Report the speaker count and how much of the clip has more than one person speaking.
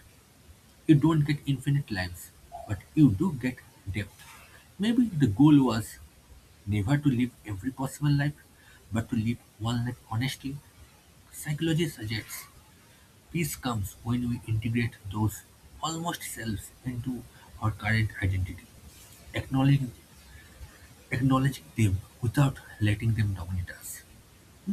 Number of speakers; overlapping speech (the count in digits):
1, no overlap